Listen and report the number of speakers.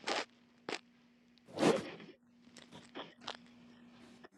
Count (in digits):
0